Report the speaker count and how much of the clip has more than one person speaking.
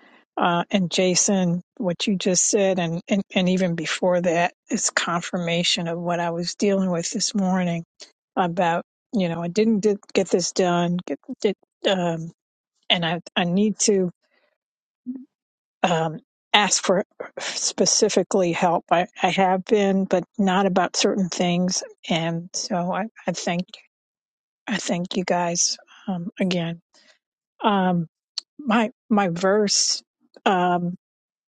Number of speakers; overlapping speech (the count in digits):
1, no overlap